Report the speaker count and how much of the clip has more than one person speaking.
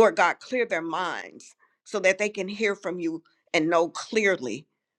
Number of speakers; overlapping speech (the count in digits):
1, no overlap